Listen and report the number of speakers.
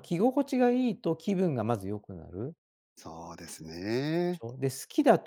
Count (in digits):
2